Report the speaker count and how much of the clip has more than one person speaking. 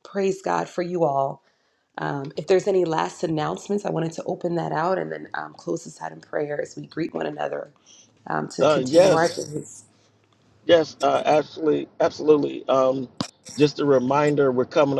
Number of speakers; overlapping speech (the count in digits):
2, about 4%